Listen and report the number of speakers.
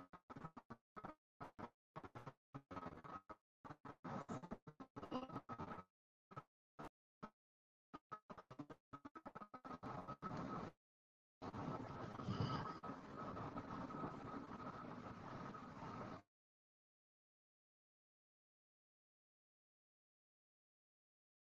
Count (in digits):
0